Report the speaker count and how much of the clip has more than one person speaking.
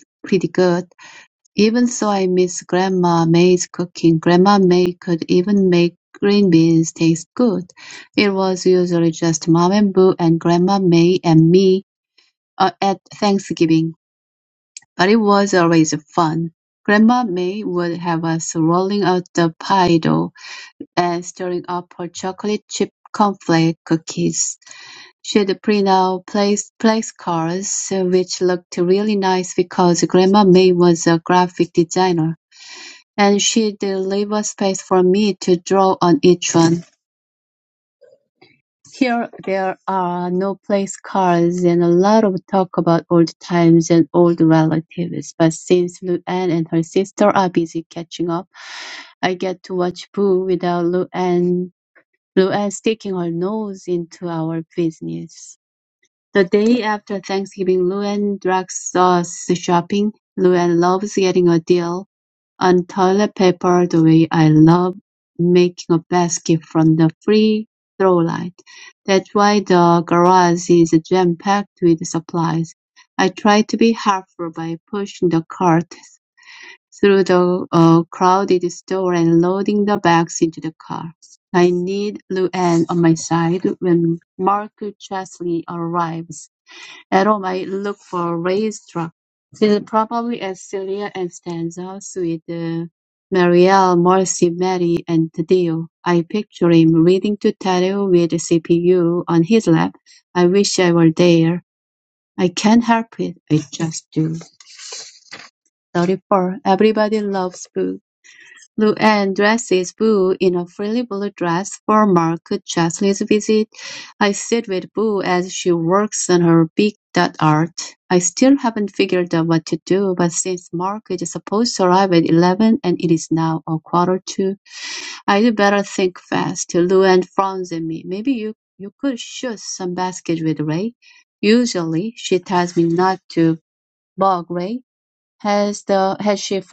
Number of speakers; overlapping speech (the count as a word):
one, no overlap